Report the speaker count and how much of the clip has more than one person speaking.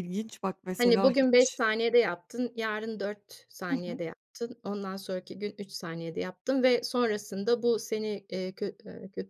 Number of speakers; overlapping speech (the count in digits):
2, about 11%